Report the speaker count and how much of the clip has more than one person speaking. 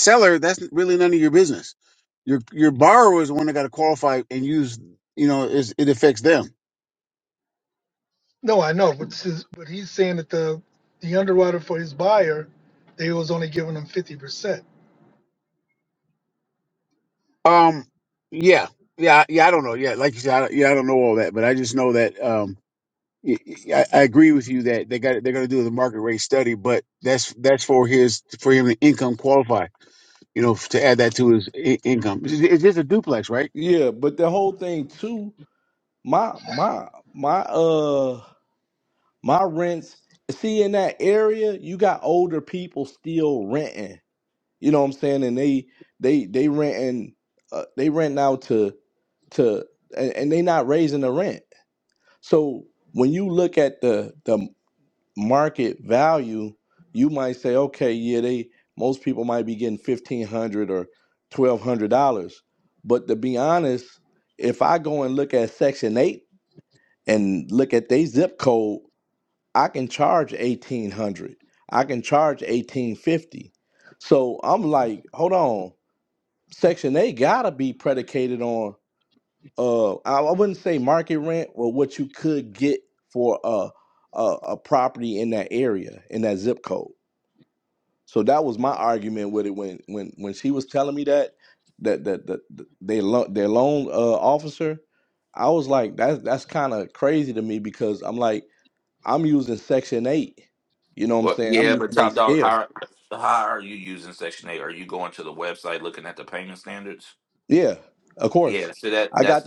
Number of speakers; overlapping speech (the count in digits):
4, about 2%